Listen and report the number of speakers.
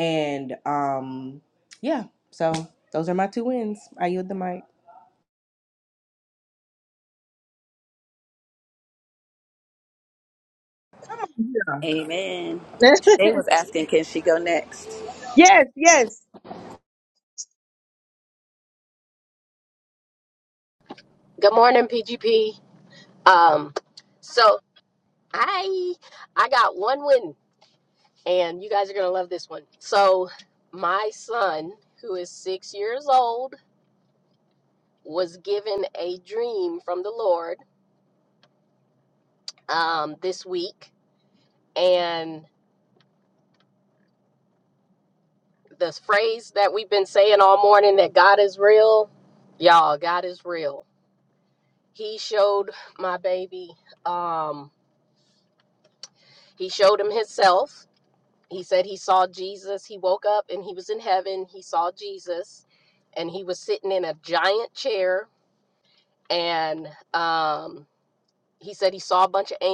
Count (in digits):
4